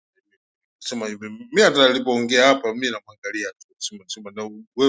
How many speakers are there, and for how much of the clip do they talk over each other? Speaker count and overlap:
one, no overlap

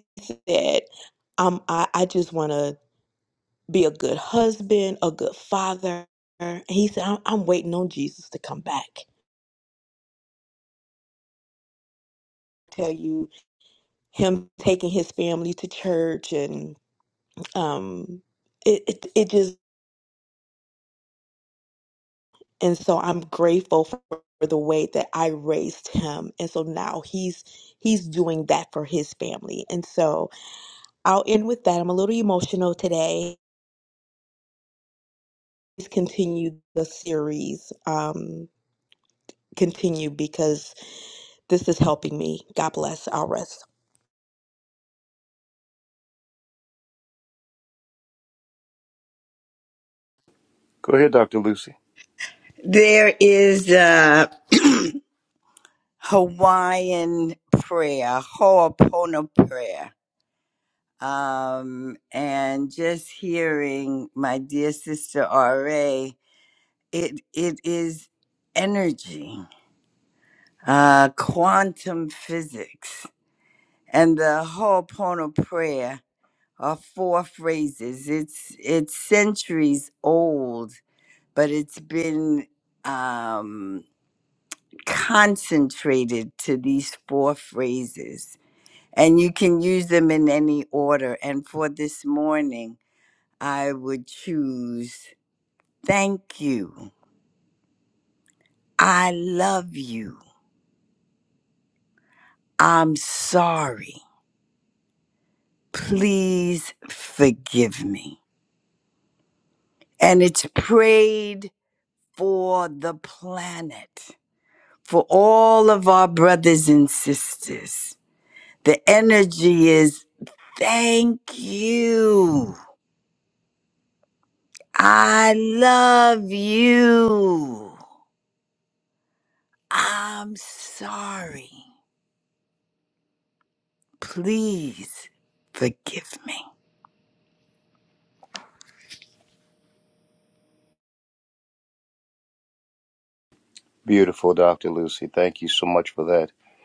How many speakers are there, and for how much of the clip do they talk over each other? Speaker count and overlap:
three, no overlap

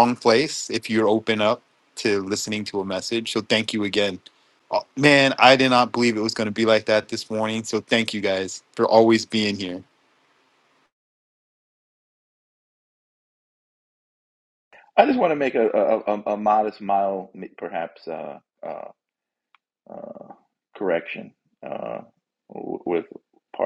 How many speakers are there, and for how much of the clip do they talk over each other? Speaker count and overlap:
two, no overlap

